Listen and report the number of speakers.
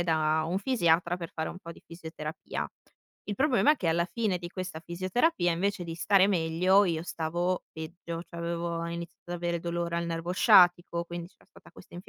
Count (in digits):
1